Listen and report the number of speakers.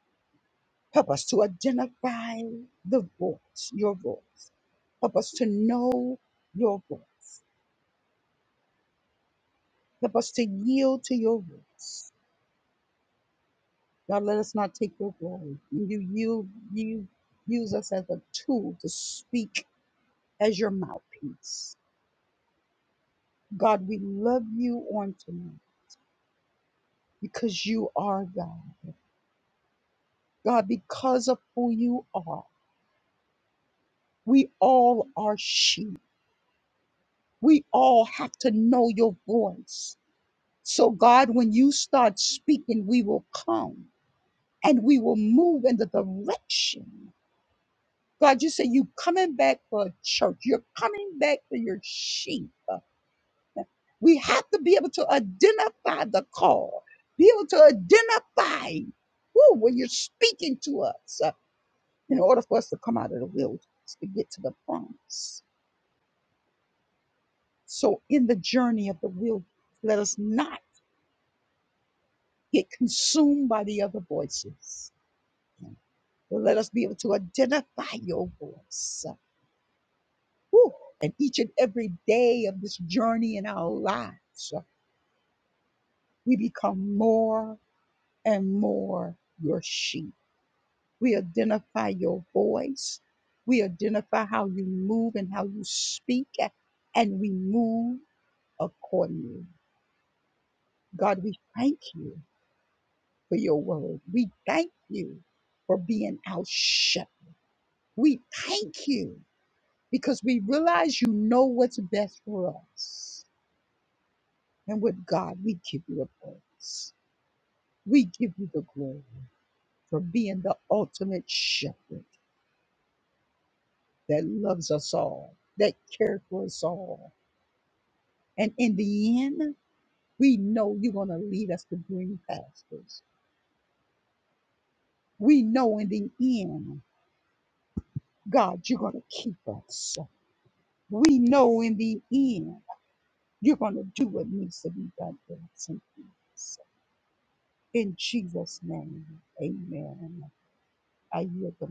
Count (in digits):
1